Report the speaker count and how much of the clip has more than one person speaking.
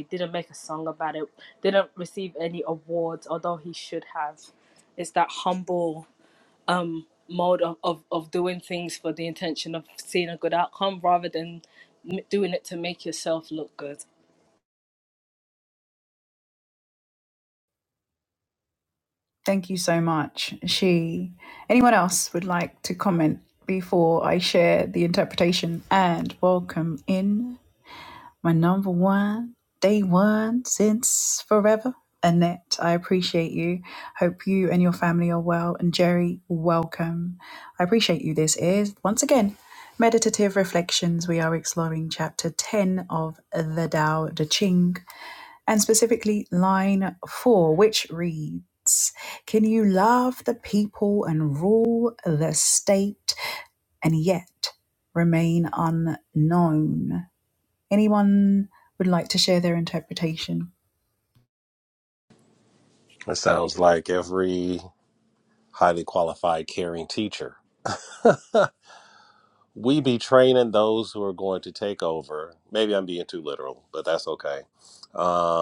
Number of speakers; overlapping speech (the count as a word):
three, no overlap